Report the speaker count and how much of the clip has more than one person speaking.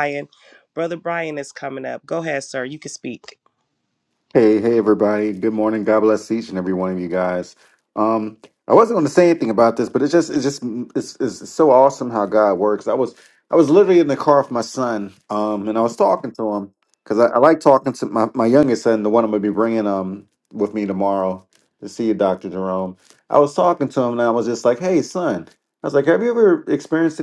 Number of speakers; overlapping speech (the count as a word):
two, no overlap